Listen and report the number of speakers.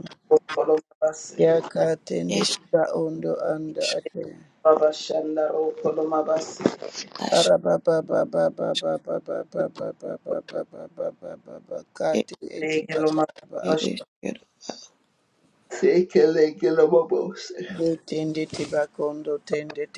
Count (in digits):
3